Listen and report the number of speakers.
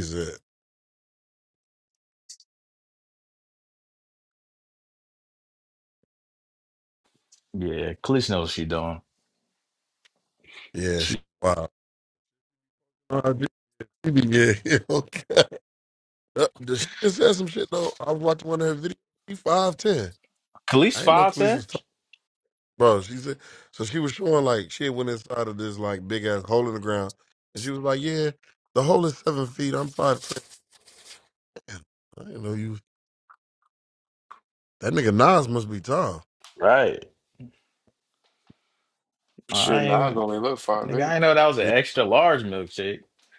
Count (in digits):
3